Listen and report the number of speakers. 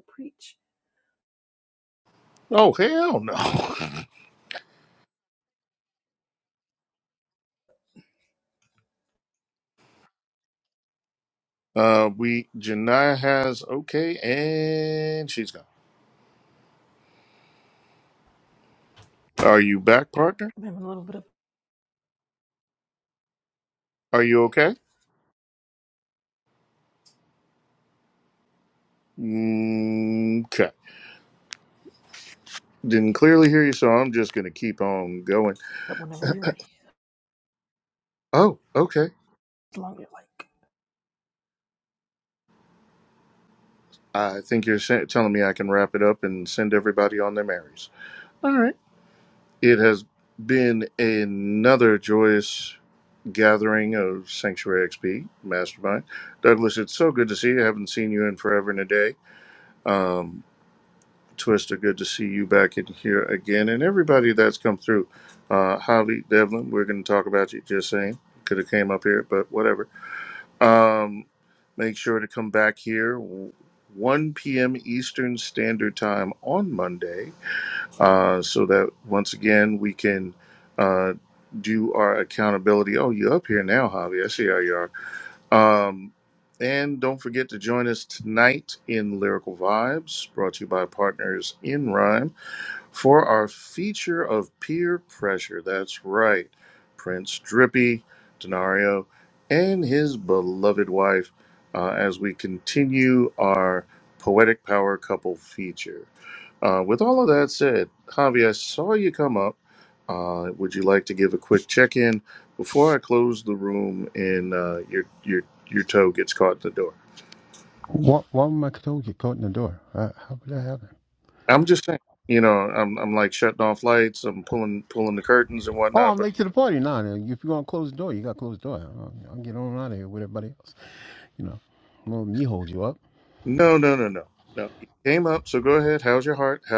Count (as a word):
three